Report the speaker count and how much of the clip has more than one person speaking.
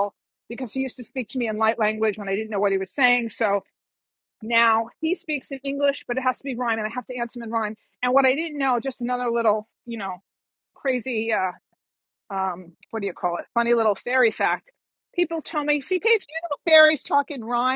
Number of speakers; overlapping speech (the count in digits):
1, no overlap